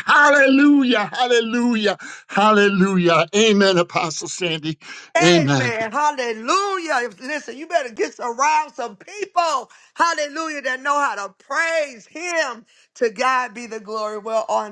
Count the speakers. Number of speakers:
2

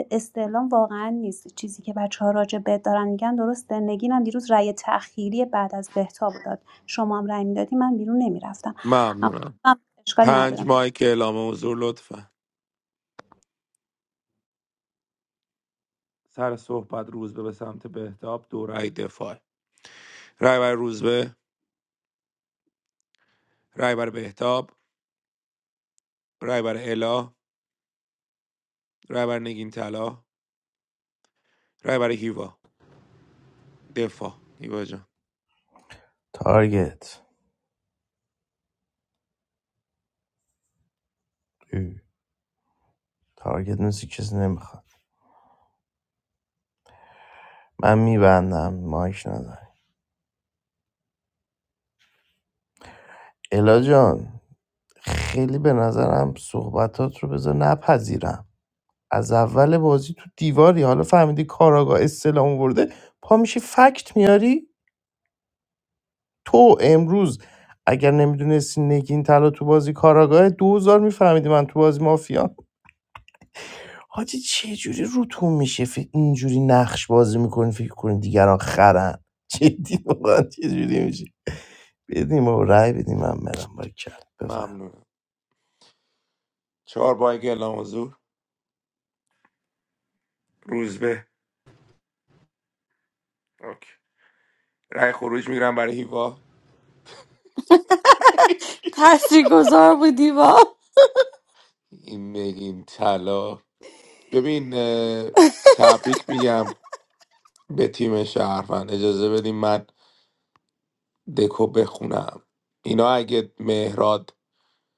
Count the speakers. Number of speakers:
4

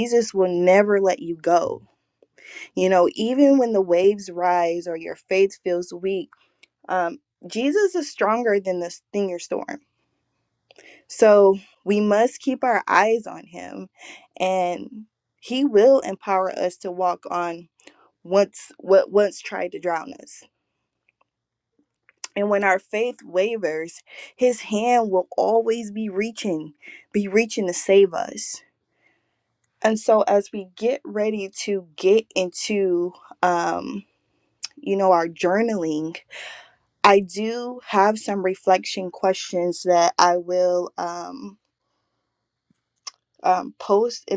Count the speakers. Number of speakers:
1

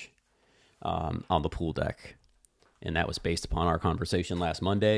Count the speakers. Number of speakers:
1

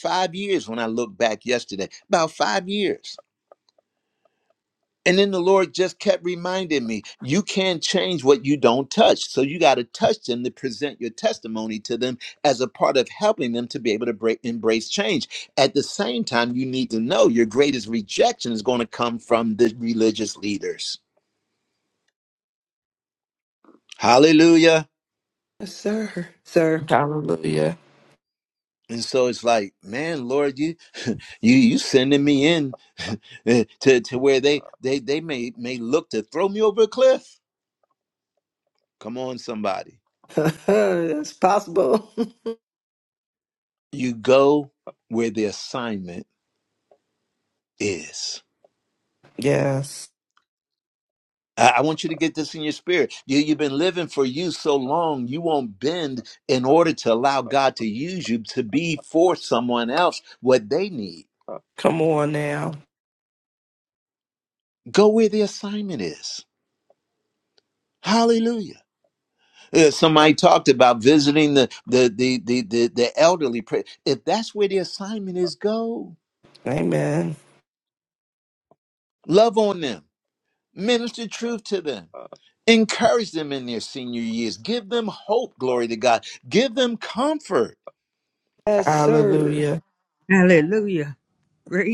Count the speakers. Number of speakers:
4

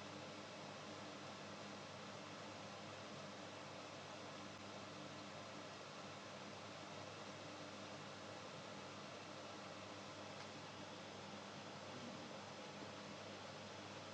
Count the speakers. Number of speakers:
0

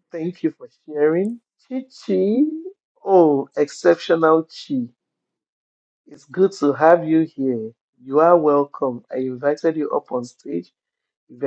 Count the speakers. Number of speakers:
1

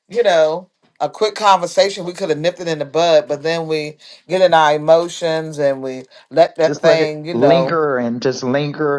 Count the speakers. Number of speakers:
2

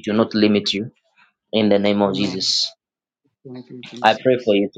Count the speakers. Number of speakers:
2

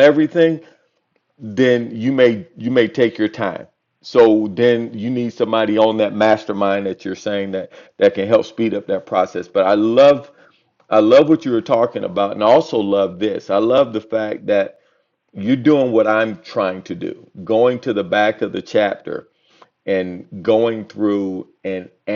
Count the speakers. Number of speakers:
1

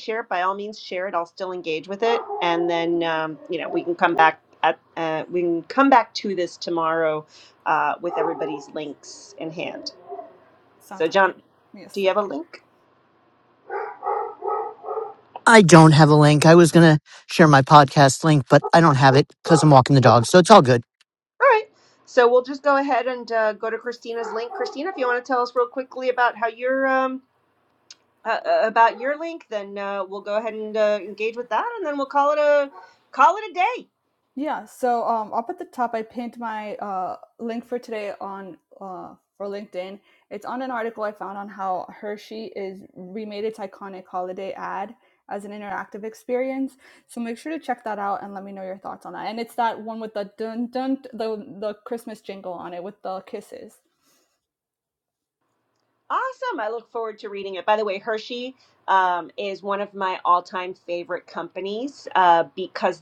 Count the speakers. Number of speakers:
3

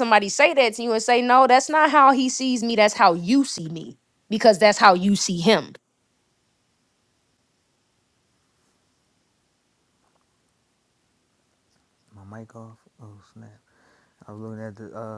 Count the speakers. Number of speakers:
2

